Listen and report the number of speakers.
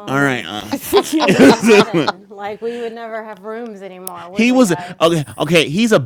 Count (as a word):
two